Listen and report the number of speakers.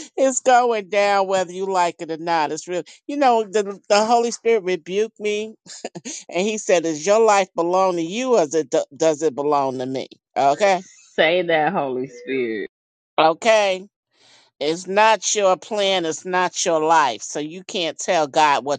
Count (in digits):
2